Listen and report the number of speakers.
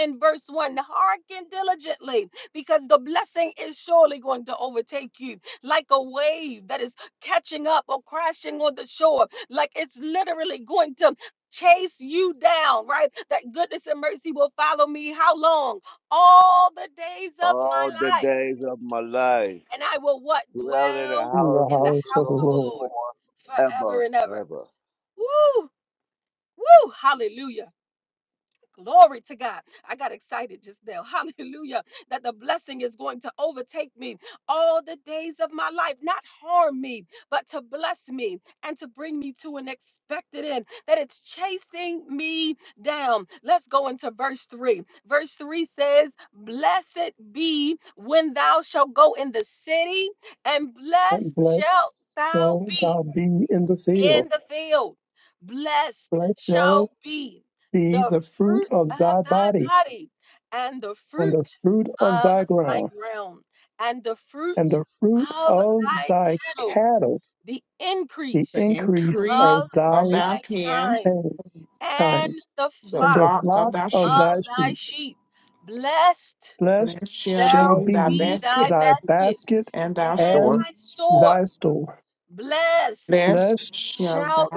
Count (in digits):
4